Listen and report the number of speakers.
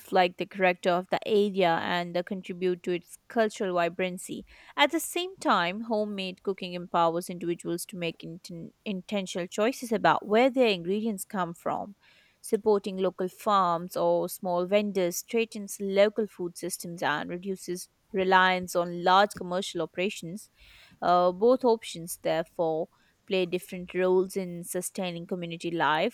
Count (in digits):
1